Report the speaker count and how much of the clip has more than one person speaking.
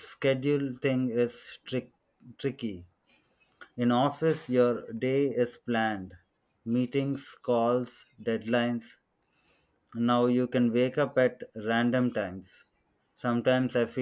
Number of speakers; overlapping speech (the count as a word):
one, no overlap